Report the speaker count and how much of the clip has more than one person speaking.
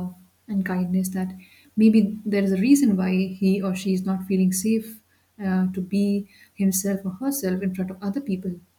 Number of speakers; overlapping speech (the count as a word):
one, no overlap